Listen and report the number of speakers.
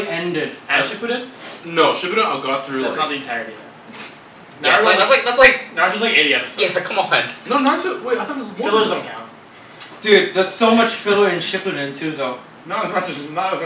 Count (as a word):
four